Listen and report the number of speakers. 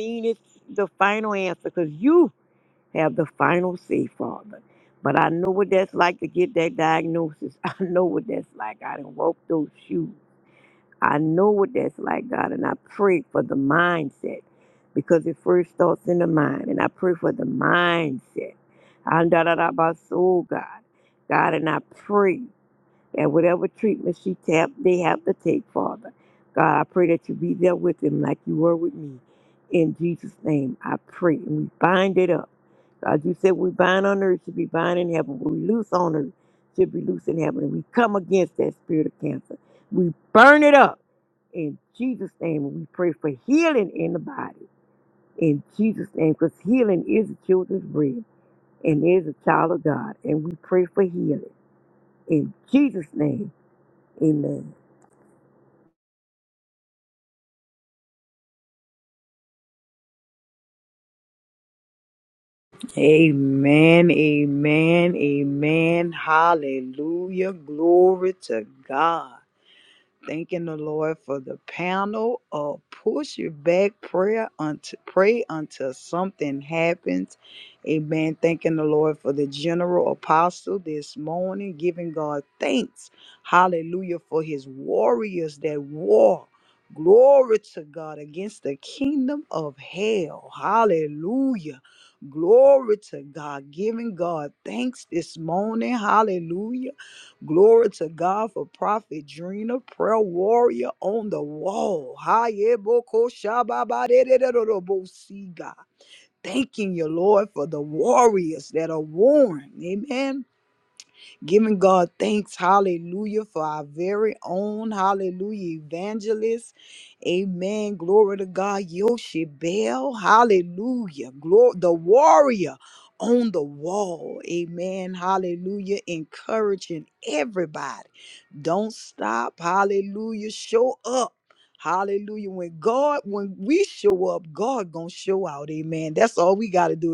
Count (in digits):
2